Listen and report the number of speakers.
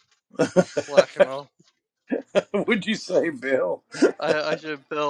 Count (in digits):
2